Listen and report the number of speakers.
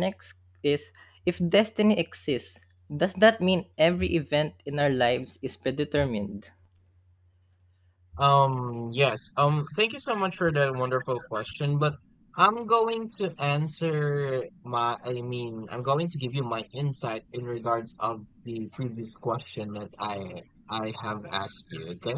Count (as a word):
two